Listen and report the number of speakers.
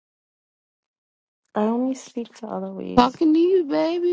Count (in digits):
2